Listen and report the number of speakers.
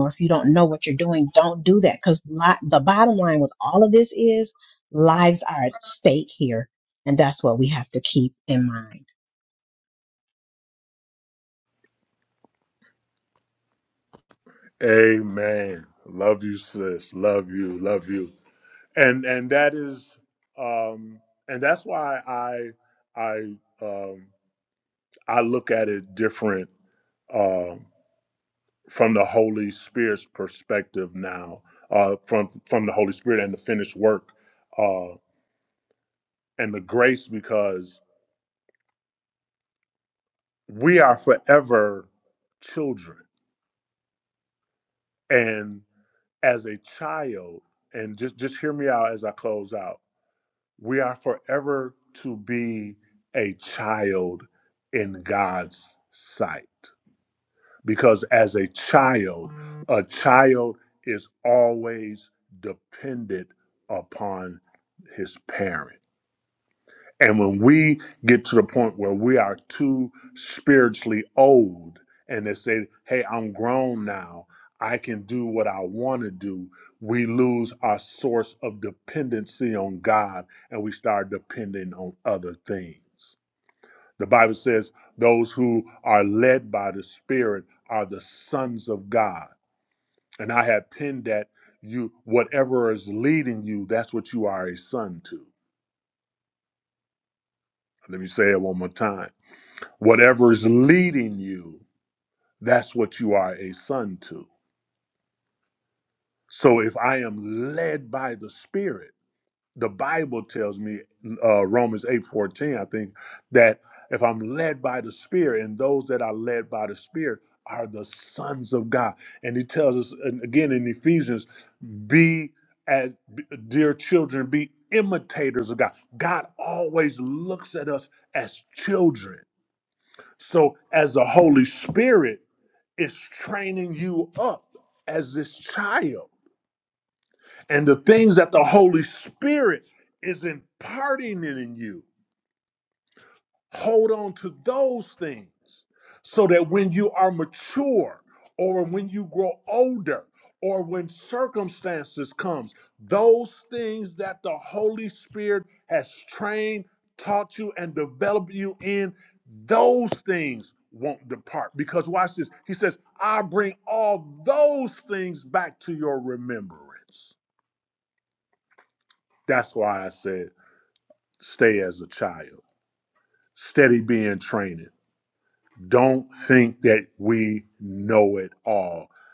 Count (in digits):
2